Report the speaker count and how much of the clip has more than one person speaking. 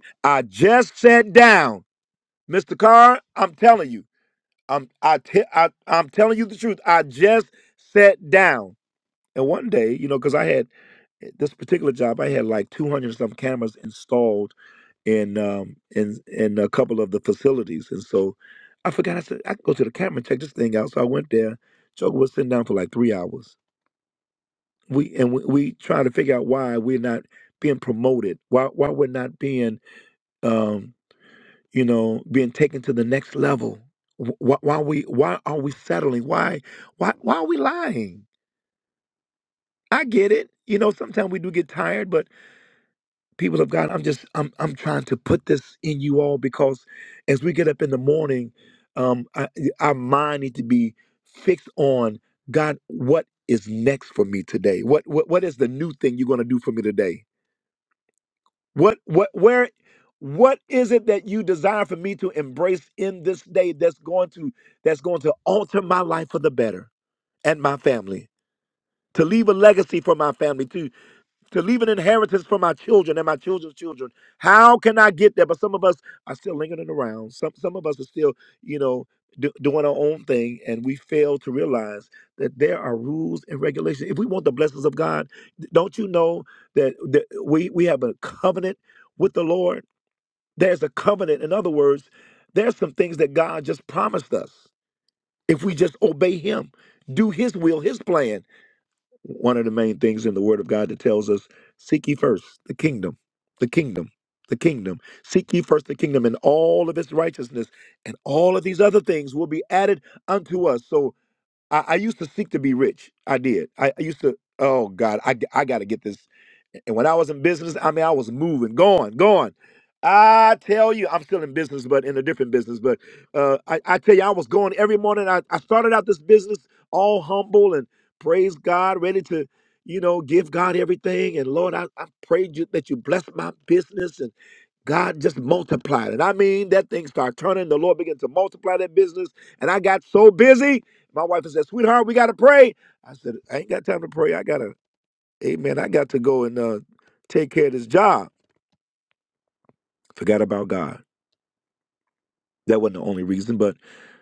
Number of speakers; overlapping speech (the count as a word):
one, no overlap